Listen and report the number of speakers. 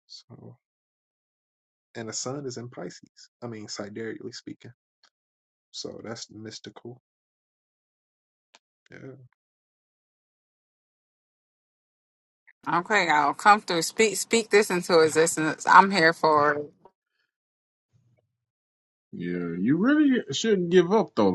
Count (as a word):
three